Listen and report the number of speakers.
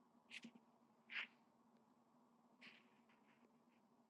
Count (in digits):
0